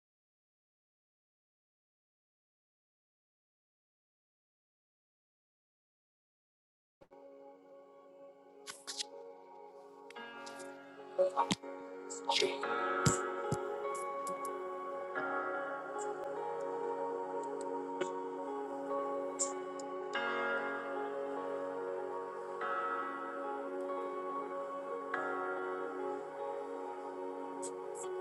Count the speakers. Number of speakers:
zero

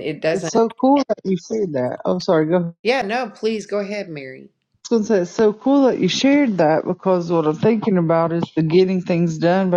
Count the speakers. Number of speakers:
two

